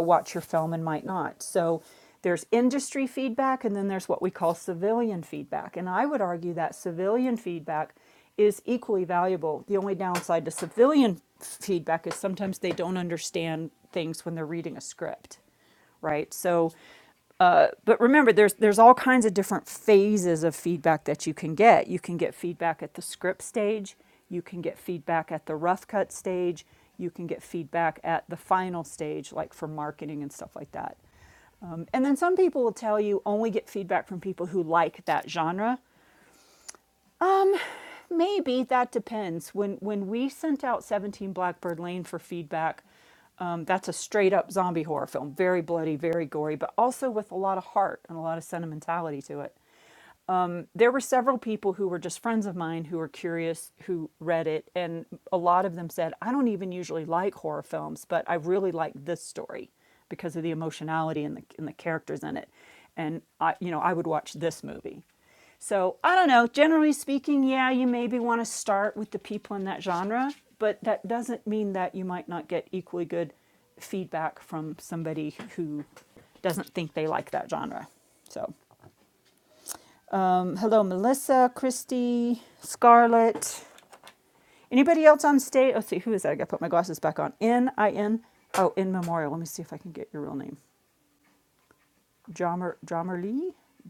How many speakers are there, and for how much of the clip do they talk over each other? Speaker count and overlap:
1, no overlap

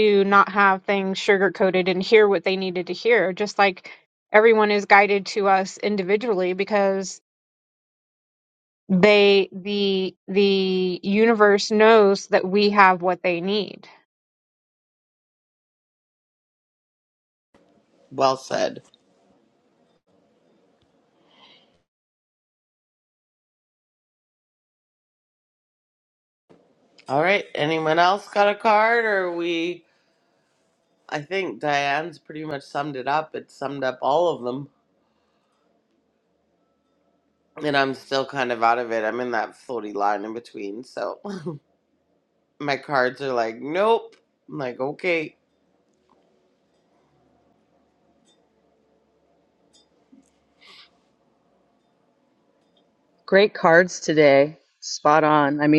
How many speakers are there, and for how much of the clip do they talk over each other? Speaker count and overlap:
3, no overlap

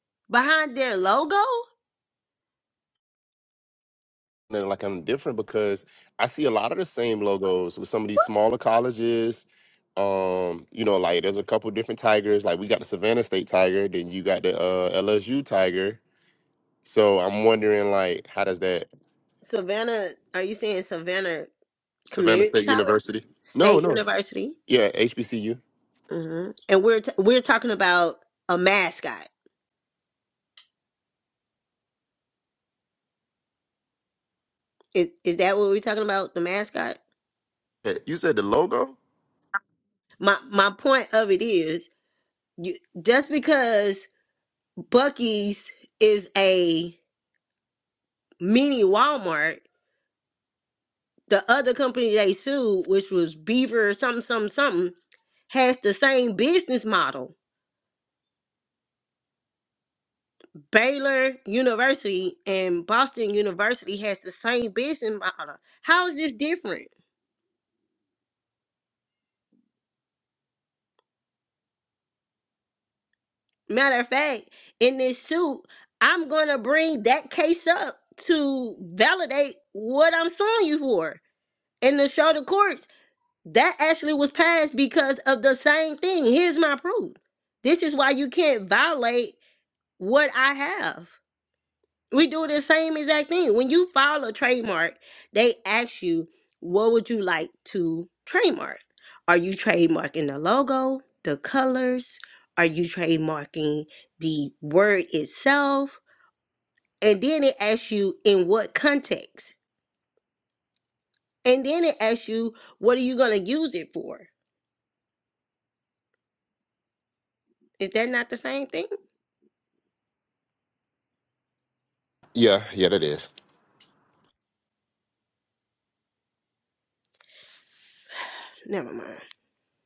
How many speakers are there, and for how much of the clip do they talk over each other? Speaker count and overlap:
2, about 1%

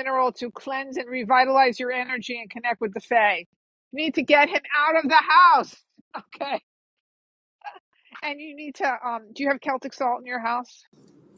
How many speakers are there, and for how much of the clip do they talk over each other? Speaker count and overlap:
1, no overlap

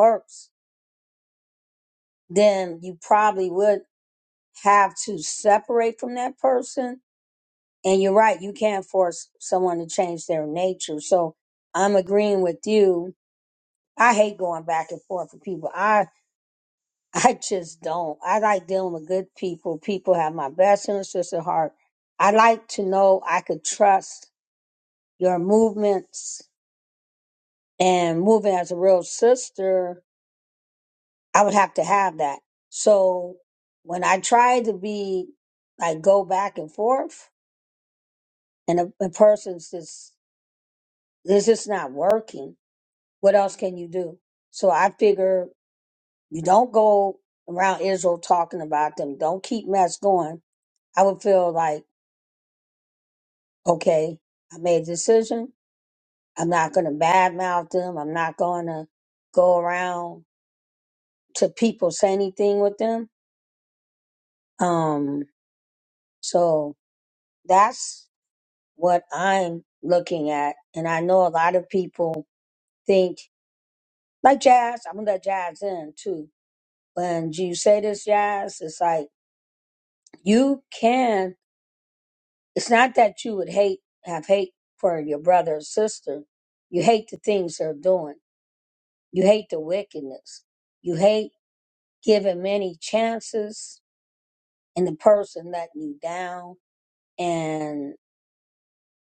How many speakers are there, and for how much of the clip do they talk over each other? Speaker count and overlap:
1, no overlap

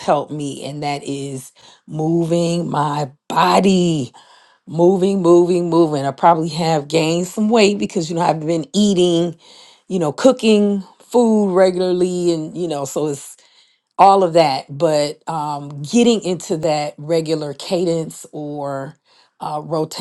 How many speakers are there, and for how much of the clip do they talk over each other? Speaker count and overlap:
1, no overlap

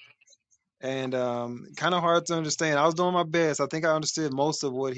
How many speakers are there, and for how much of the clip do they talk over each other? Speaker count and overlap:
1, no overlap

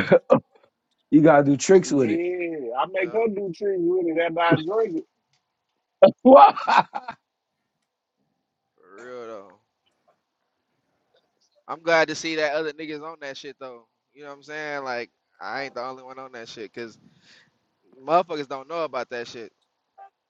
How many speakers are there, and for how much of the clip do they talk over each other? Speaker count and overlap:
3, about 3%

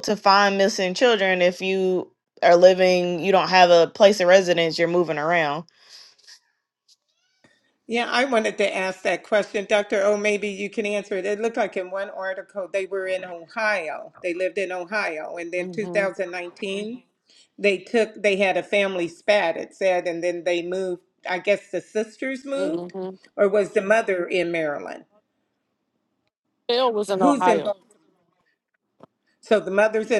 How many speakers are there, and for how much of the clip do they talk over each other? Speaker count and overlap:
3, about 4%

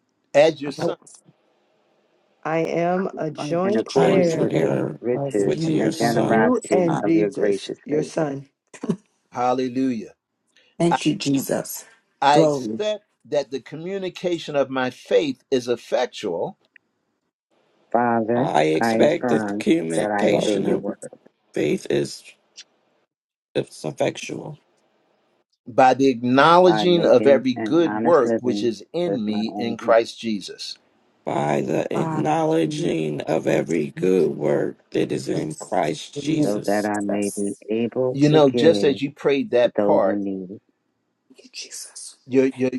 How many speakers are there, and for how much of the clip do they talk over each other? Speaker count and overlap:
5, about 31%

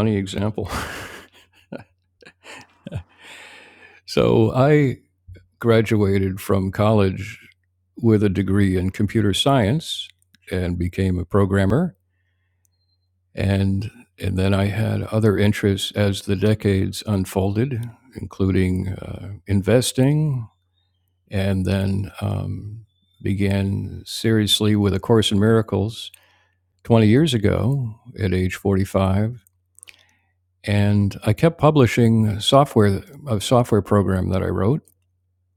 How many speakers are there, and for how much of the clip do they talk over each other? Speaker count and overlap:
1, no overlap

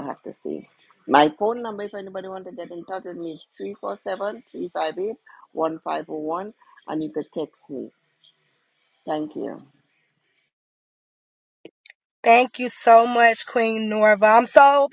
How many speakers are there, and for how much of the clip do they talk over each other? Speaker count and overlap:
2, no overlap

